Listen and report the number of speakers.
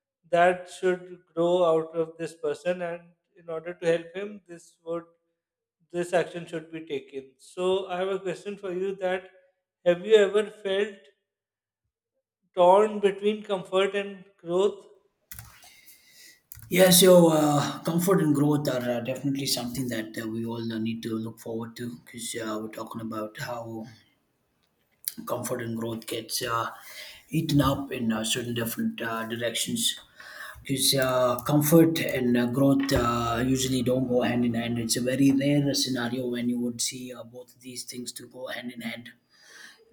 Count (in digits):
2